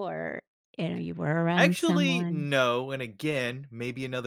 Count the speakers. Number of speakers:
2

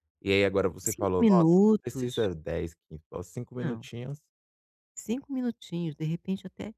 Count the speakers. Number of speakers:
2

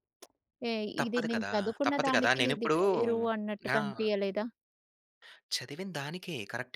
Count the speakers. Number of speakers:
2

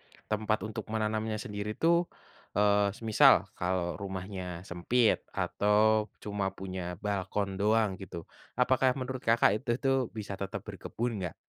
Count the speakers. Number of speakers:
1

